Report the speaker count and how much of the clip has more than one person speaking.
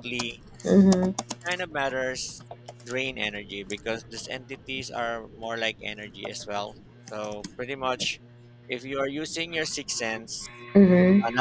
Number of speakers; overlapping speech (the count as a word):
two, about 2%